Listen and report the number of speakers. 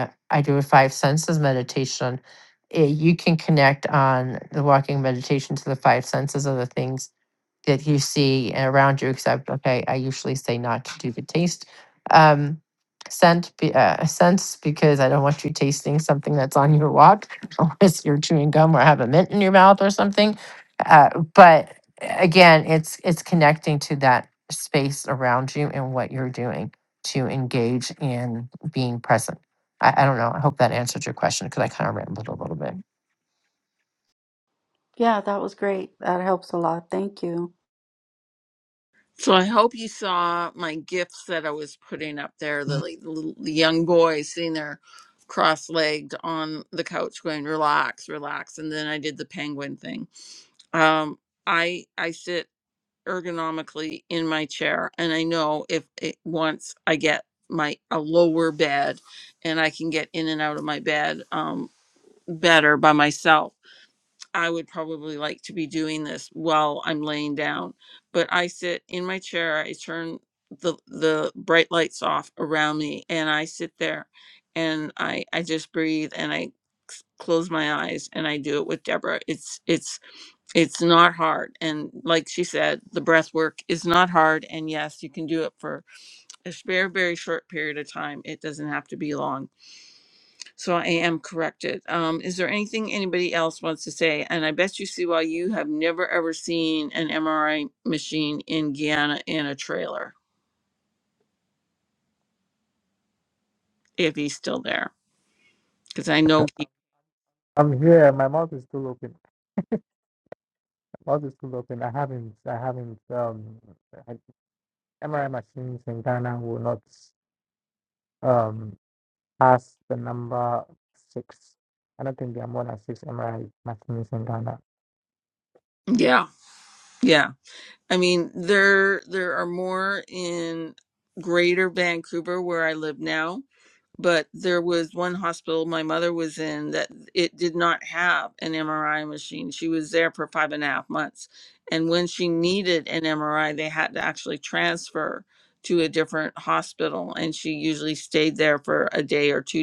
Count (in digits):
4